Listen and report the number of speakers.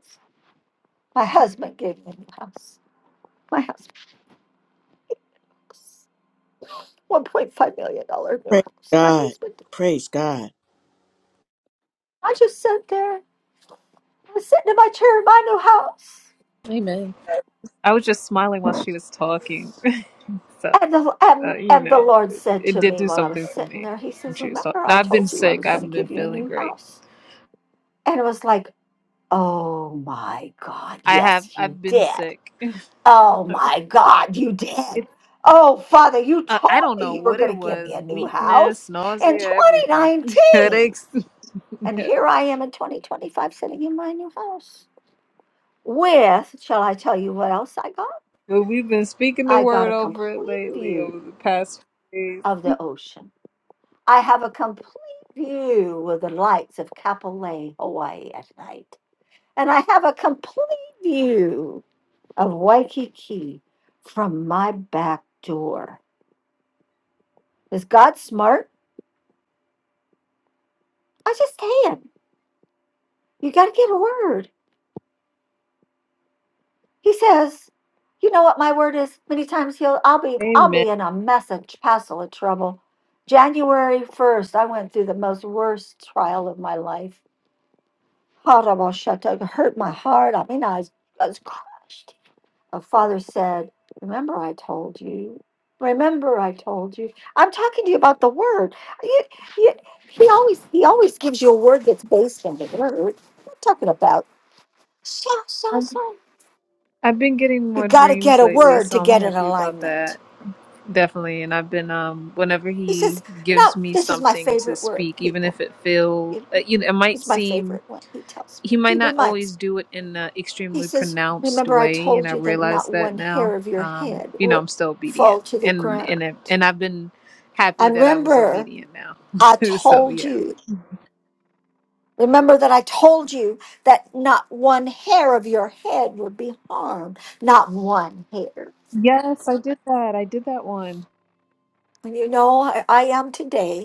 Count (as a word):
three